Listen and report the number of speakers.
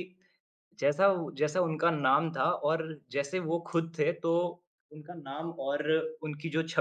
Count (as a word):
one